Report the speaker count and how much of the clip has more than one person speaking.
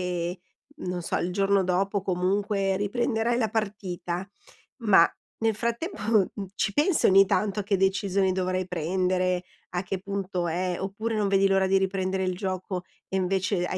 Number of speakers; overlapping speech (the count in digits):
1, no overlap